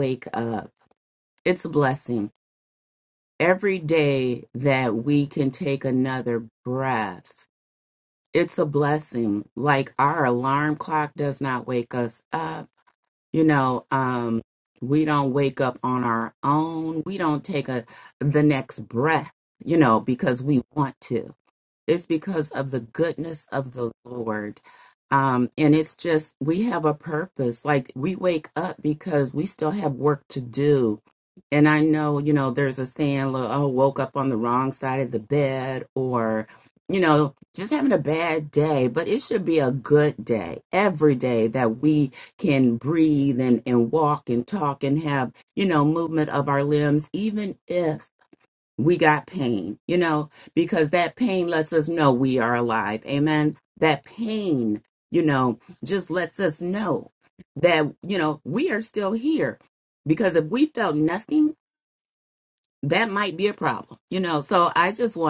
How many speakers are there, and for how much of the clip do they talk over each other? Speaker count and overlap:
1, no overlap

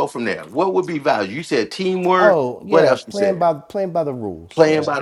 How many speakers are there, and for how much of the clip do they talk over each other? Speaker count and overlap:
2, about 28%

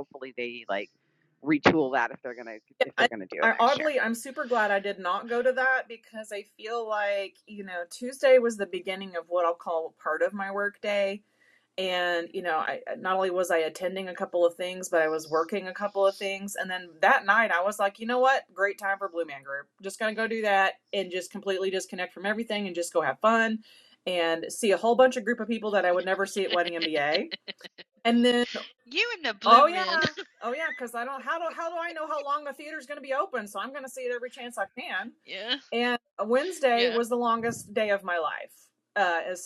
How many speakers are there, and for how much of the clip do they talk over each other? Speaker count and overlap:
3, about 4%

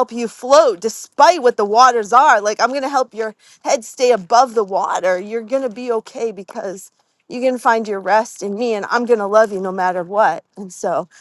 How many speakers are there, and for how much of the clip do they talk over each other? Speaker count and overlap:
1, no overlap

